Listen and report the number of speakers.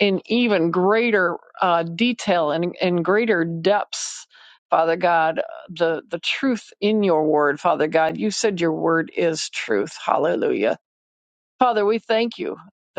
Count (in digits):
1